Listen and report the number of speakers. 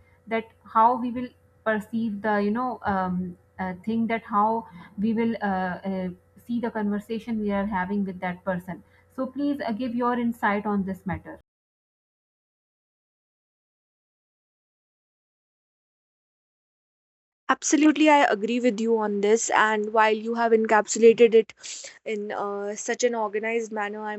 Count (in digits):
2